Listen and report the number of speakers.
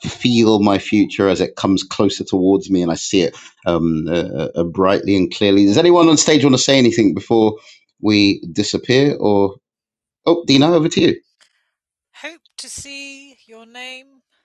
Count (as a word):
two